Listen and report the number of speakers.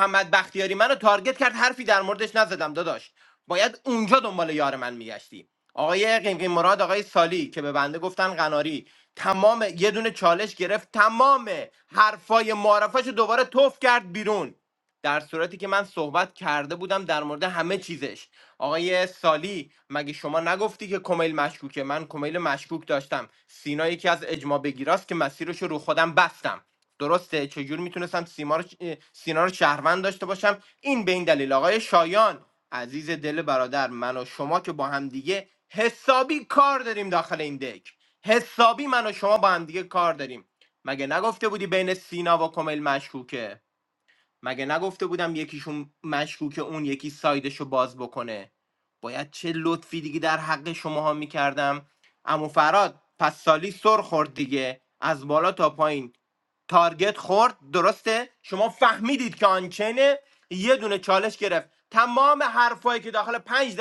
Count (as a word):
one